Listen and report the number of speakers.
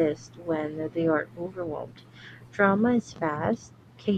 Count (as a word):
one